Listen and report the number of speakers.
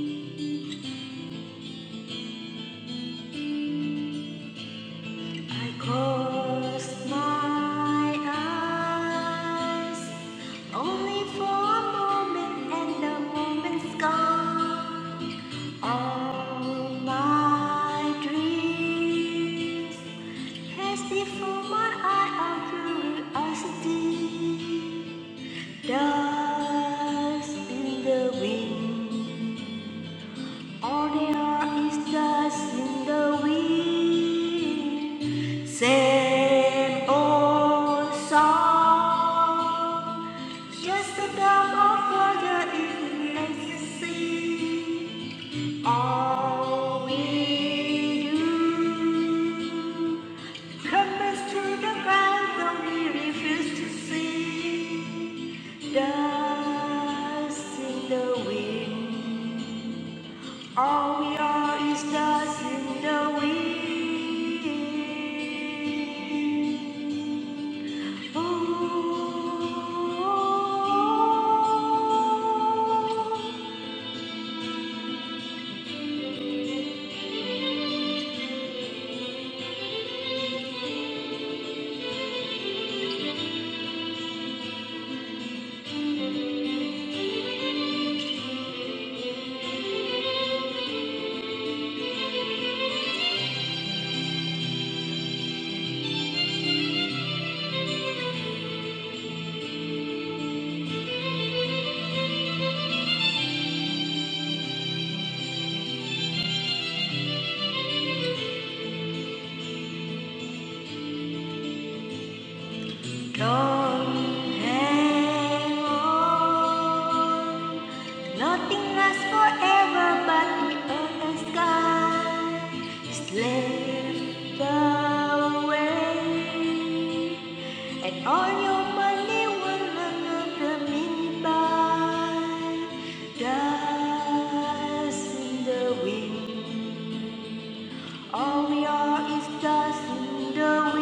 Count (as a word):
one